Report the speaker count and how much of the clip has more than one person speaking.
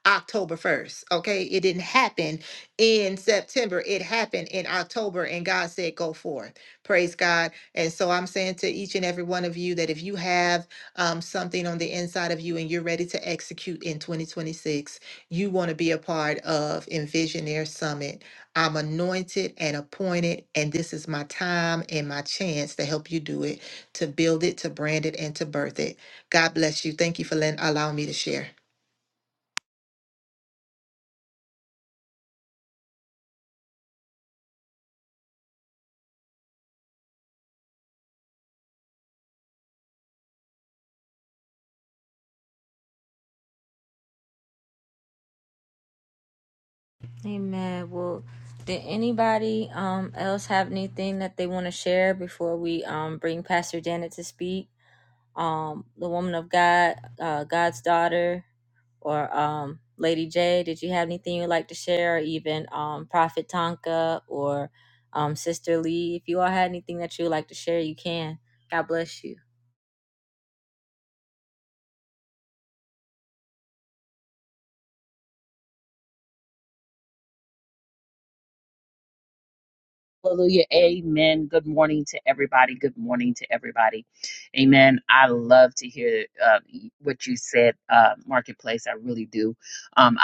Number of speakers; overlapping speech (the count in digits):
3, no overlap